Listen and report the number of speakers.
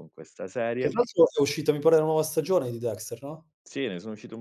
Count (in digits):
2